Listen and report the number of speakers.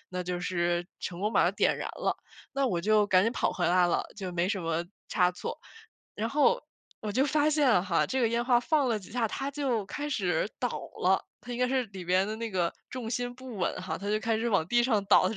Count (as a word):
one